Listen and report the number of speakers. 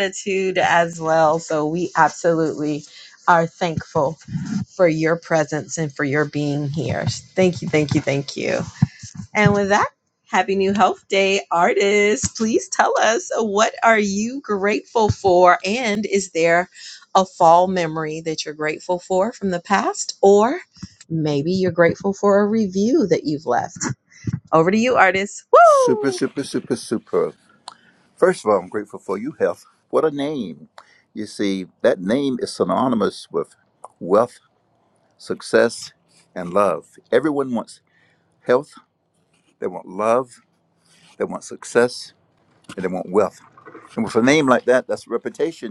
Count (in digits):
2